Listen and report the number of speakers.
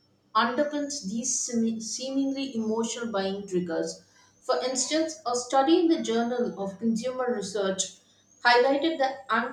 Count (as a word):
one